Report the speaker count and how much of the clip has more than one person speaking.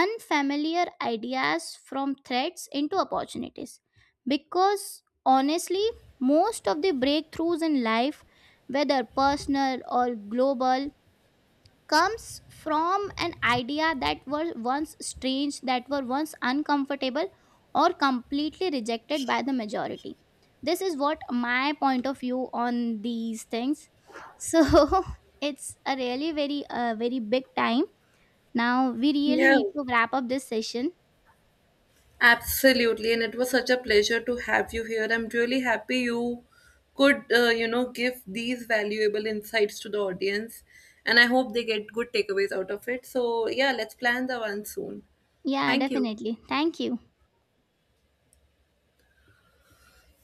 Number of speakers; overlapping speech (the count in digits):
2, about 2%